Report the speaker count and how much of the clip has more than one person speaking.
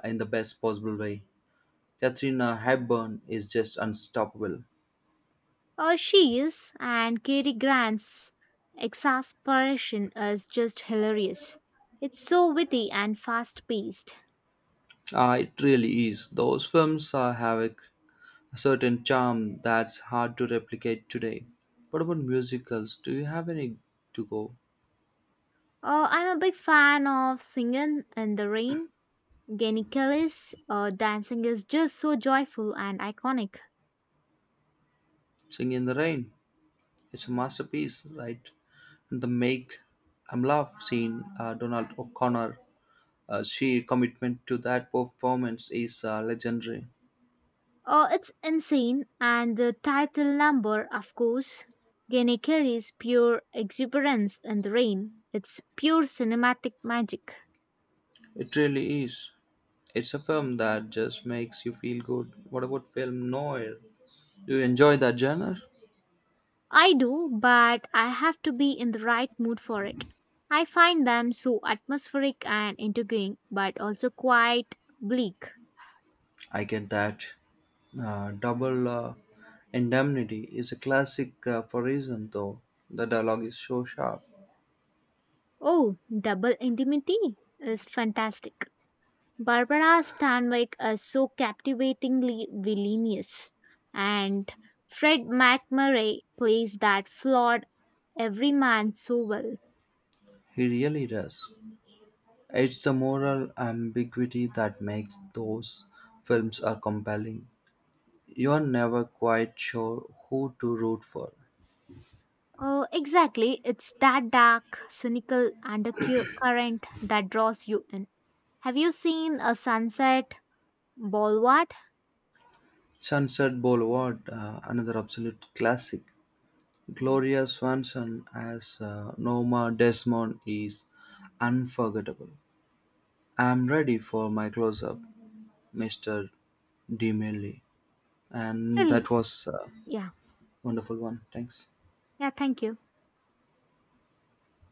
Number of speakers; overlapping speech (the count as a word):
two, under 1%